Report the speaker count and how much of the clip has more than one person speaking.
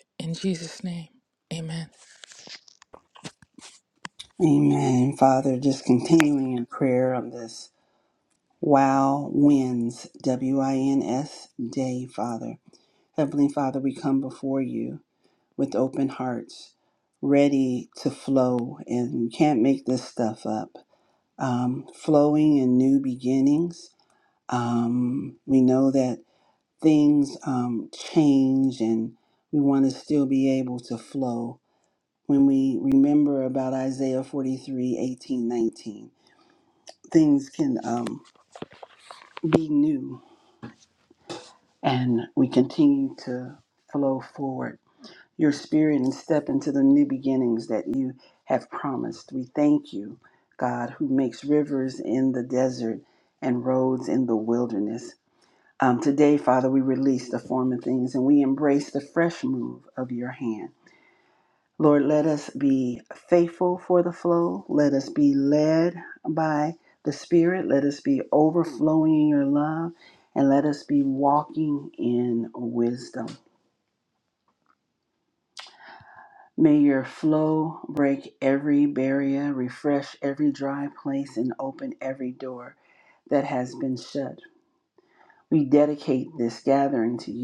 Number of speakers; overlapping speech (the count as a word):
two, no overlap